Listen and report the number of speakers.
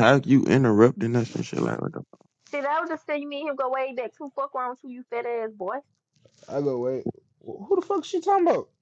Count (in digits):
3